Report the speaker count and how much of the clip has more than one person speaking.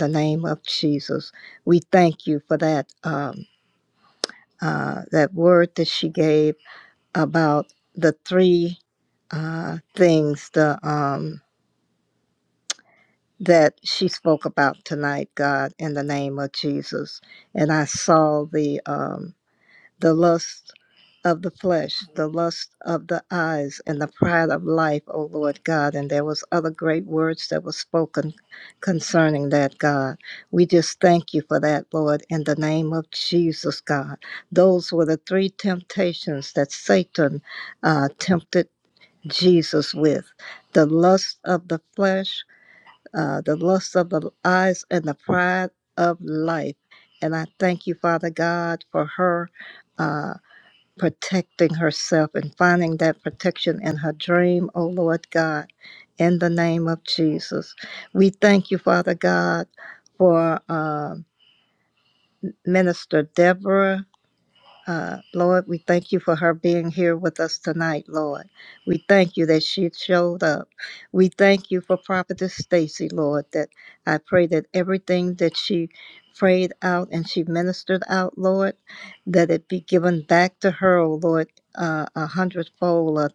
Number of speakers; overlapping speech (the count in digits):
1, no overlap